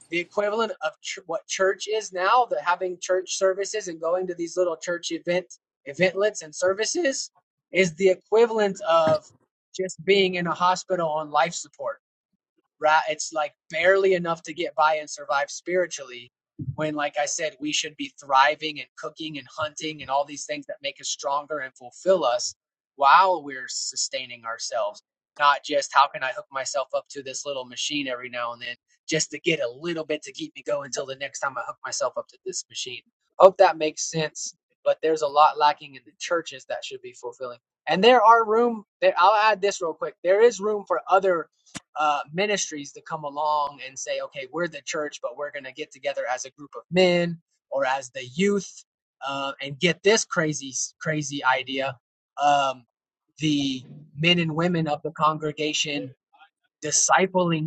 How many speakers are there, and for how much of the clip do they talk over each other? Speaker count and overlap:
1, no overlap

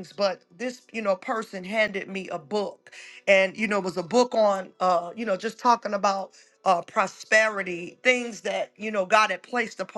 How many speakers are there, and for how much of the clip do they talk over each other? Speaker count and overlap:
1, no overlap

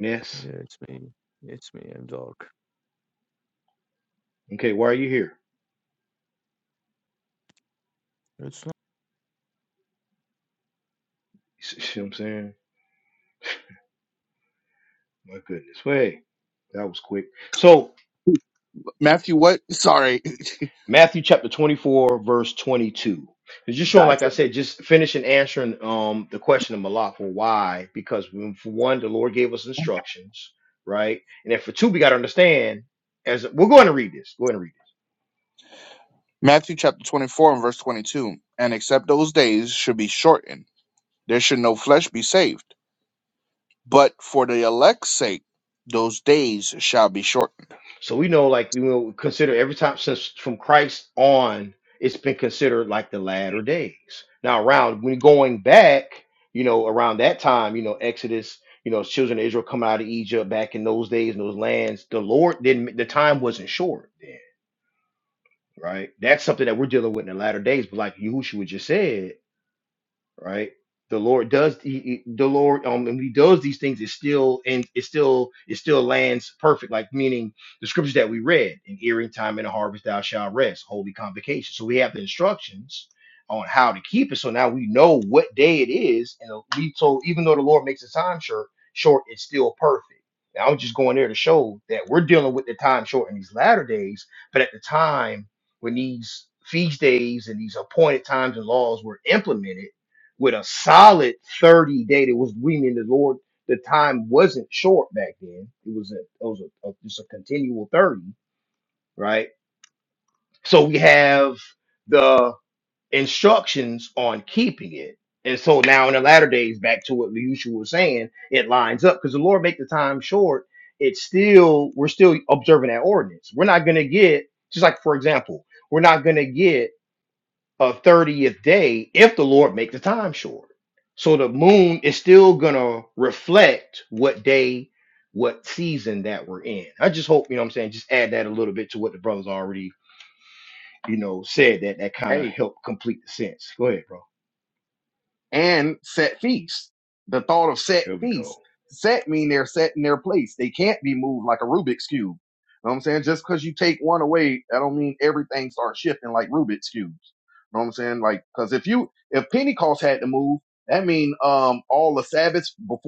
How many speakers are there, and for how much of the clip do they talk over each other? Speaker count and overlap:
4, under 1%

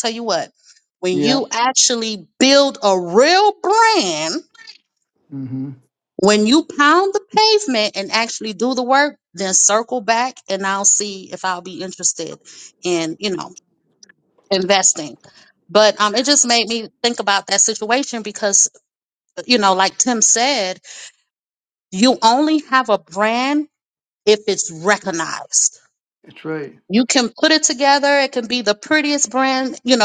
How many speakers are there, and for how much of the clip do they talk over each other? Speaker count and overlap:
2, about 1%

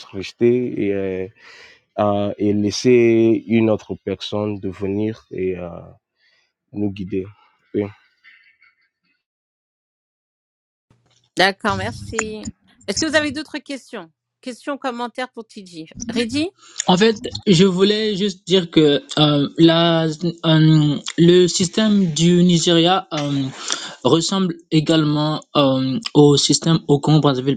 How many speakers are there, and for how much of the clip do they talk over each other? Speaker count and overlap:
3, no overlap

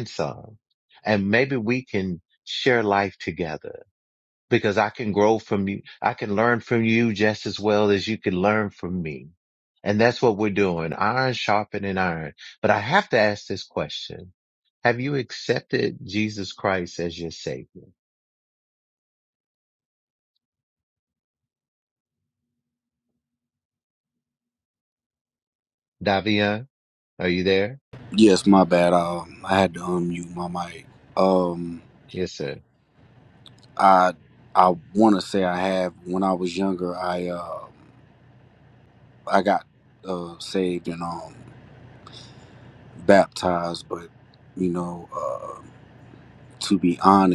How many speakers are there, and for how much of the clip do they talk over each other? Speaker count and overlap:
2, no overlap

